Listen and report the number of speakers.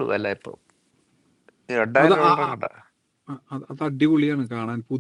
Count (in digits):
2